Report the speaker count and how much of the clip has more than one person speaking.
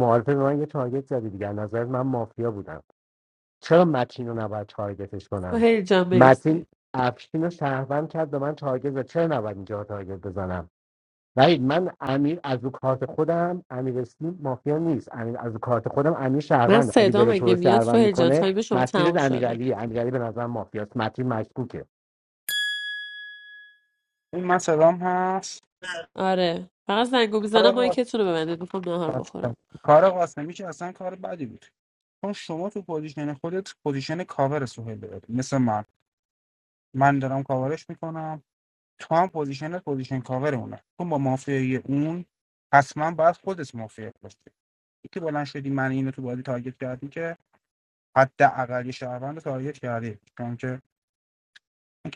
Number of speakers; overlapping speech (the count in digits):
3, about 8%